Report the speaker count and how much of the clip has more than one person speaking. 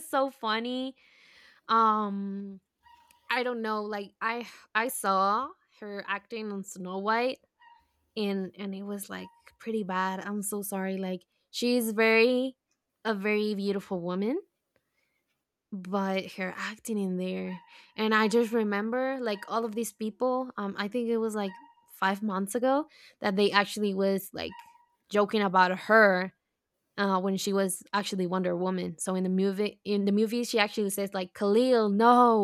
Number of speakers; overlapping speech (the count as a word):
one, no overlap